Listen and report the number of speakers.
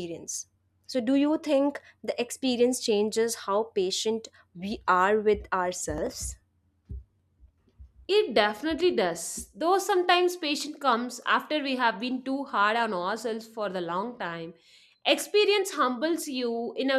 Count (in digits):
2